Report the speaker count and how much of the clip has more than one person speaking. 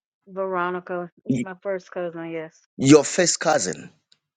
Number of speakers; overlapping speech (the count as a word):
two, about 4%